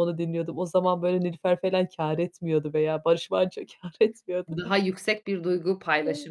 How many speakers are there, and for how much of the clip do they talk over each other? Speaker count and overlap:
2, about 3%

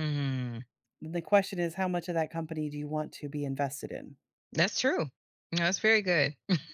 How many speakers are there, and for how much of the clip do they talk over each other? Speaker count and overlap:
2, no overlap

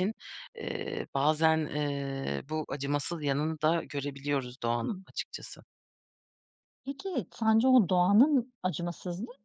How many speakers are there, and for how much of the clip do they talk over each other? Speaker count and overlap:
2, about 1%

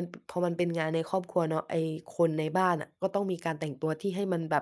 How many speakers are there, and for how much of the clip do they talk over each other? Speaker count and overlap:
1, no overlap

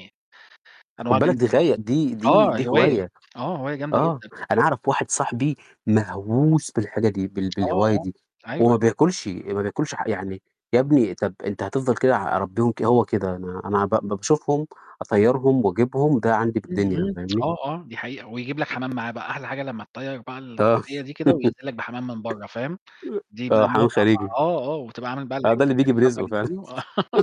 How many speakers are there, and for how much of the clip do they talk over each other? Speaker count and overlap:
2, about 15%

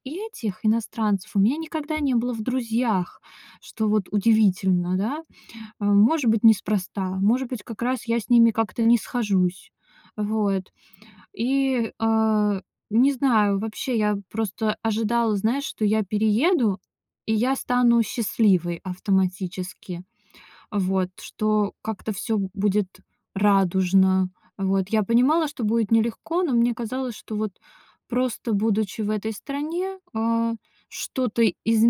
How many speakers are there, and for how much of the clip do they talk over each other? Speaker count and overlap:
1, no overlap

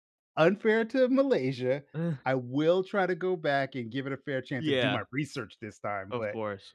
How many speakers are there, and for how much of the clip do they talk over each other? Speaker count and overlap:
2, about 10%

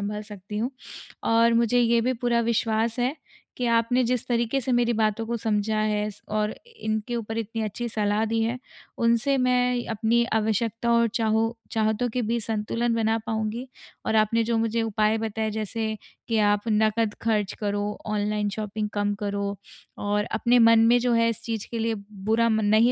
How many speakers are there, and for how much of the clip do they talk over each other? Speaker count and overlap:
1, no overlap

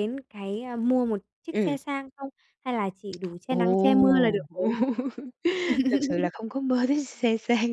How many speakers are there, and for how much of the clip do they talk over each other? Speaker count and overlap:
2, about 15%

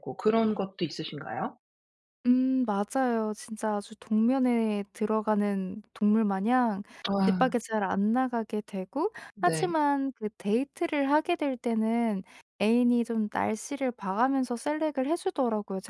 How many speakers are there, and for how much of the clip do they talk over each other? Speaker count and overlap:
2, about 3%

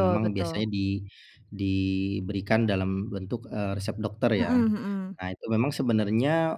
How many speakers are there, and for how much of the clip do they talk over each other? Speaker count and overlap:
2, about 13%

